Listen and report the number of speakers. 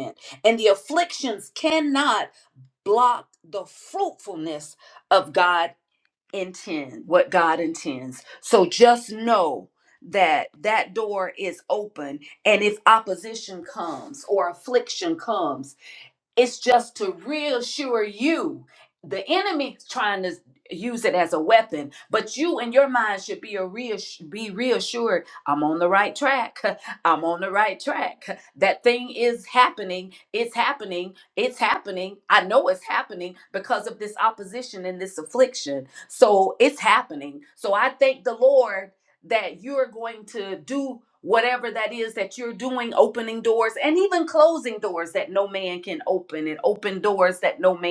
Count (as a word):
one